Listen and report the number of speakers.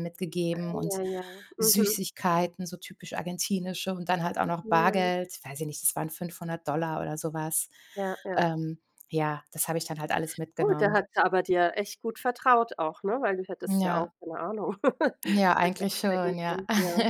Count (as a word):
two